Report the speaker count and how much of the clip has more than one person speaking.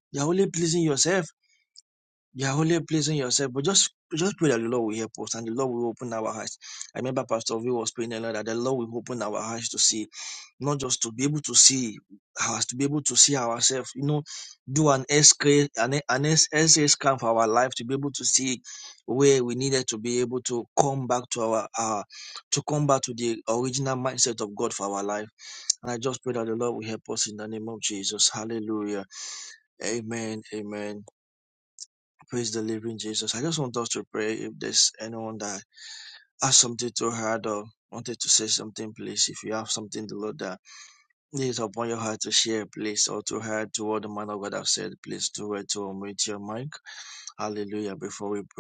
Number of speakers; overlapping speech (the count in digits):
1, no overlap